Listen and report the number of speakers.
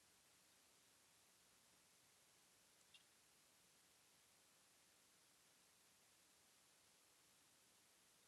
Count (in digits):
0